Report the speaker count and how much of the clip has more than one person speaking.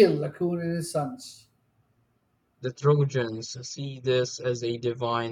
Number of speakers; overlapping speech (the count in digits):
2, no overlap